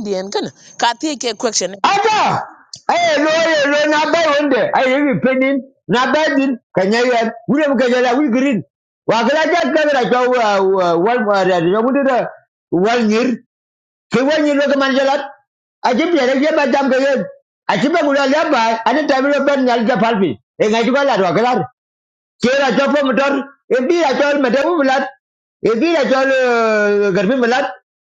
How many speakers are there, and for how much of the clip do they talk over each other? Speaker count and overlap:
2, no overlap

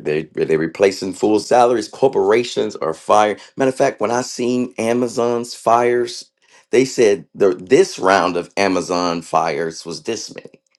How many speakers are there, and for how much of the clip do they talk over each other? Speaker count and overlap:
1, no overlap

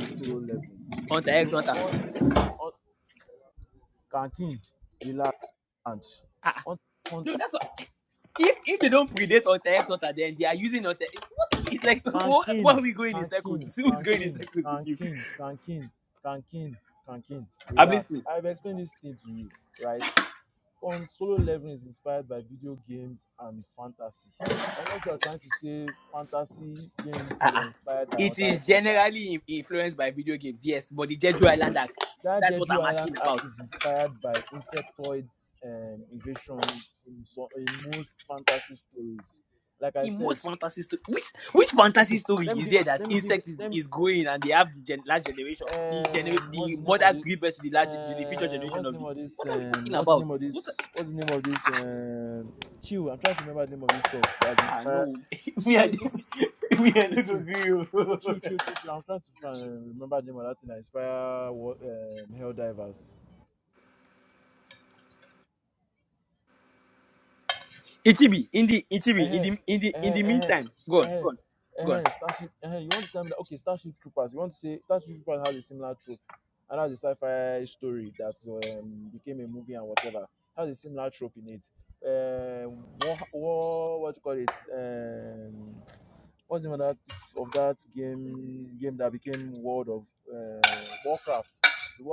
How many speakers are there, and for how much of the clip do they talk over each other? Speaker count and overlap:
2, about 16%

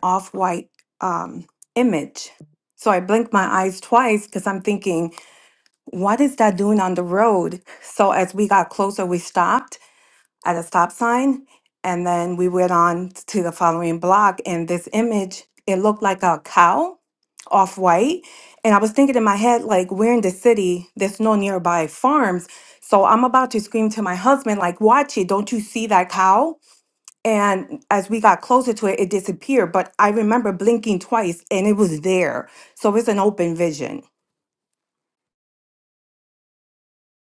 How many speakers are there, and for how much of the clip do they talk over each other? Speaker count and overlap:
1, no overlap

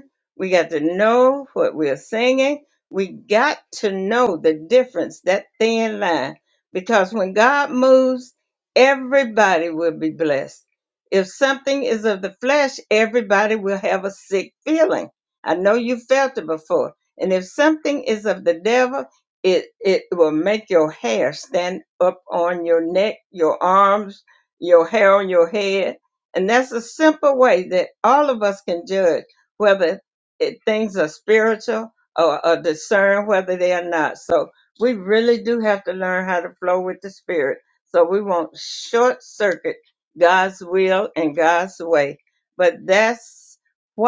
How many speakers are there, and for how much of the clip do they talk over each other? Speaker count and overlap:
1, no overlap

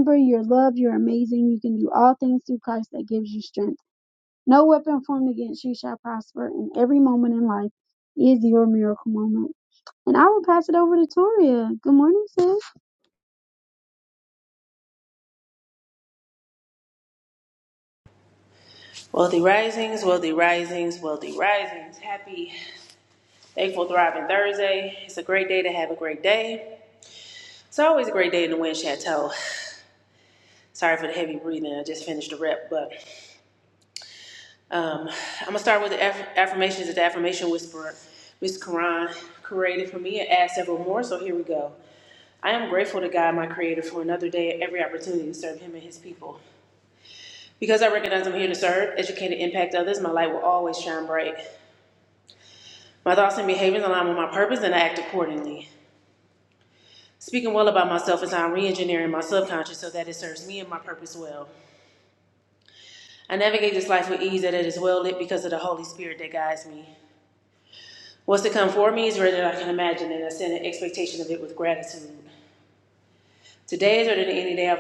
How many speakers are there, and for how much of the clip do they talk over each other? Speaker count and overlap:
2, no overlap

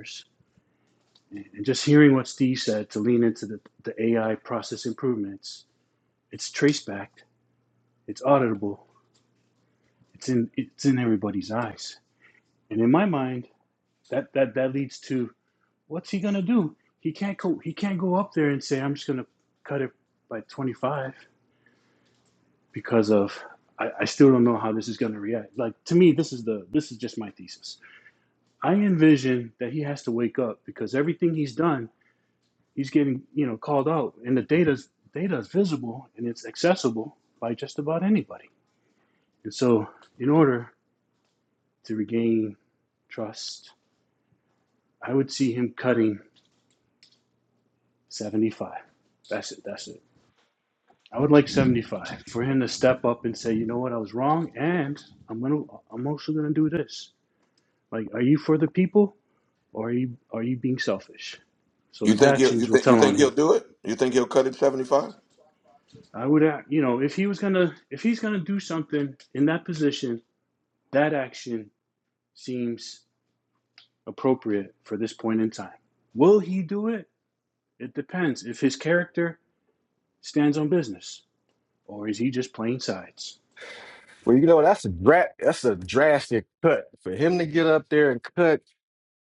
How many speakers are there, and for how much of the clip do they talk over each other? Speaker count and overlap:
3, about 1%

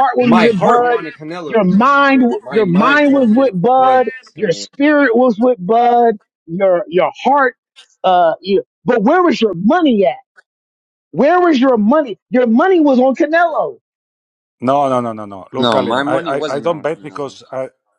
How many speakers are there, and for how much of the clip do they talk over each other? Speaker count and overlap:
3, about 32%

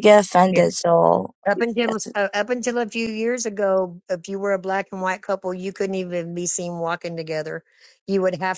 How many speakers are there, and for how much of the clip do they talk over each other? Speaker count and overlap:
2, about 5%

